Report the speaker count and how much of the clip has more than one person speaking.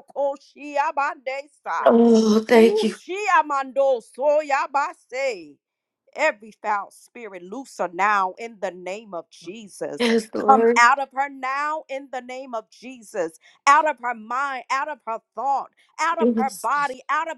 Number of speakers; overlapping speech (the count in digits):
2, about 7%